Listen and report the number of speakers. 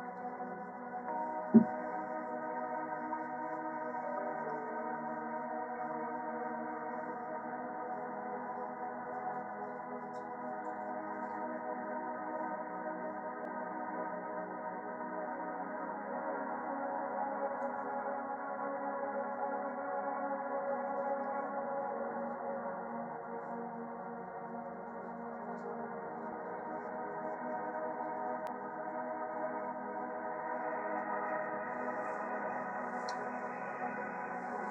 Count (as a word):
zero